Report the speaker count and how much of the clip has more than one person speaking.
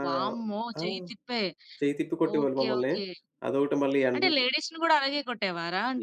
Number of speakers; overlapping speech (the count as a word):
two, about 19%